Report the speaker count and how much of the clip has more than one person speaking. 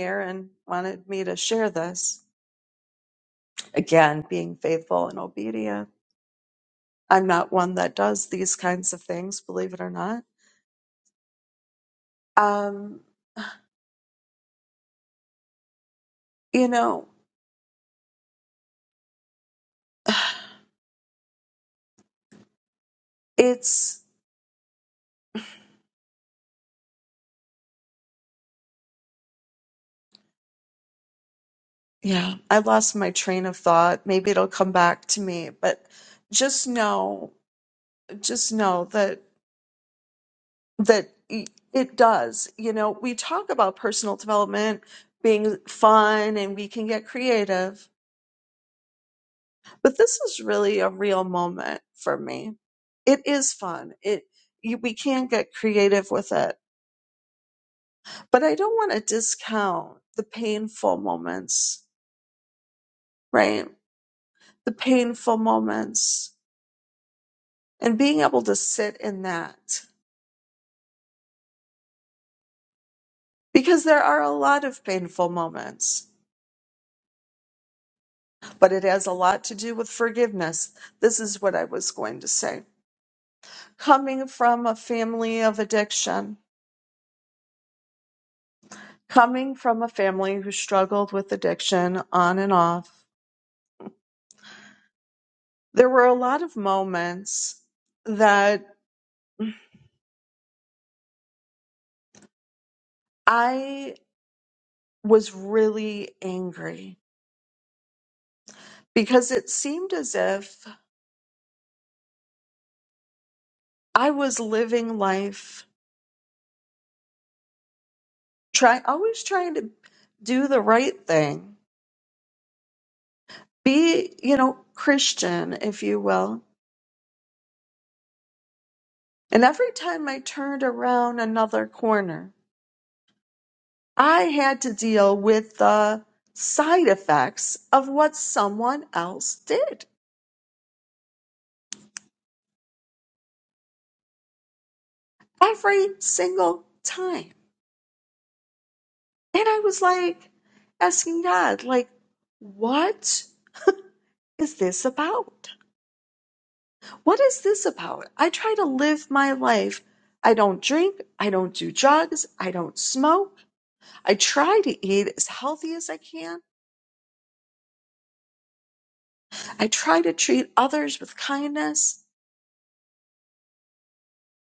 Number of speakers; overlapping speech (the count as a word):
one, no overlap